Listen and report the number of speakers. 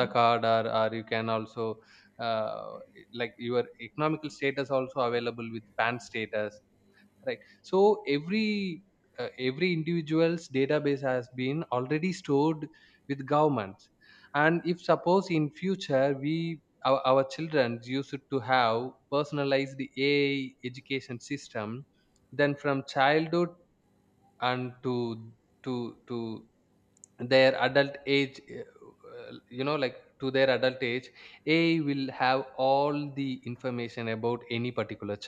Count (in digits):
1